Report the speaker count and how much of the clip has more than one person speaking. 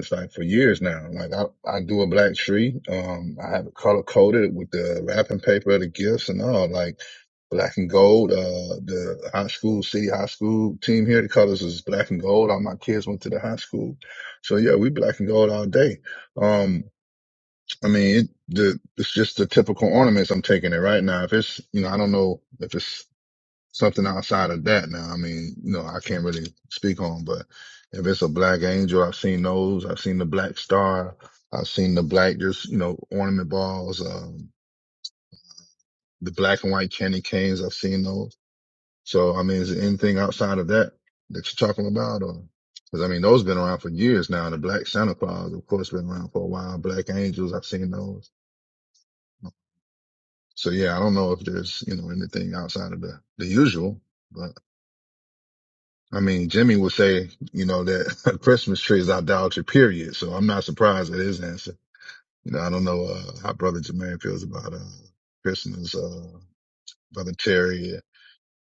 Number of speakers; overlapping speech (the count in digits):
1, no overlap